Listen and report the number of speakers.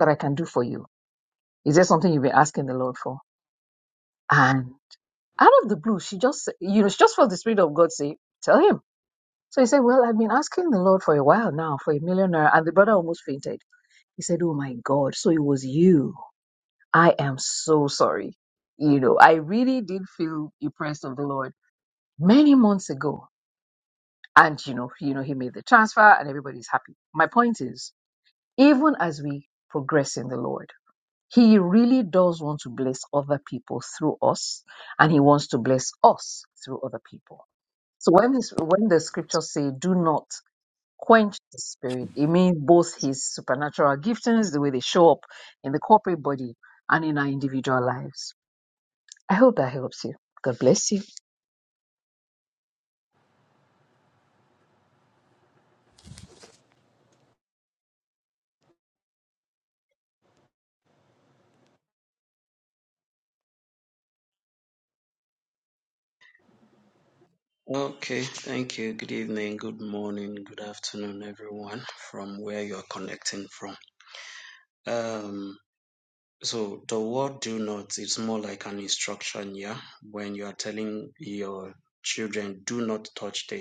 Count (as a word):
two